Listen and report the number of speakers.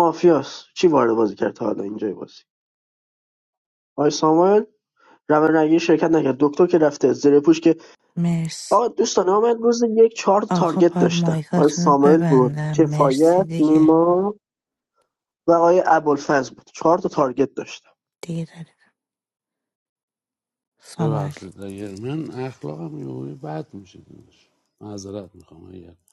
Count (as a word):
three